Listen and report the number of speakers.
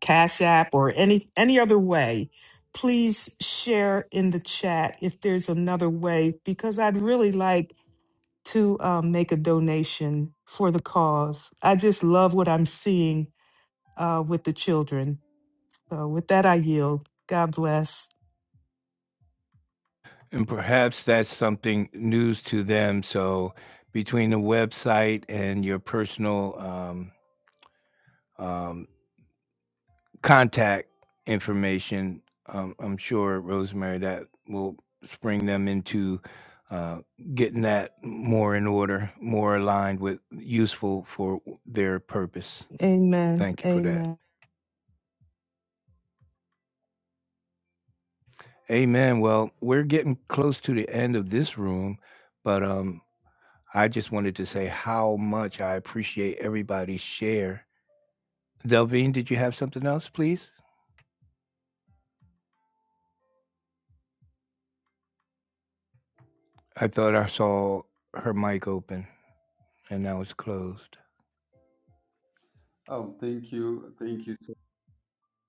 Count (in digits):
3